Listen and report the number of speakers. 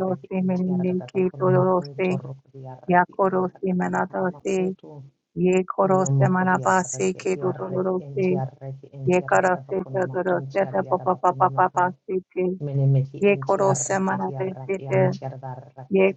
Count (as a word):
two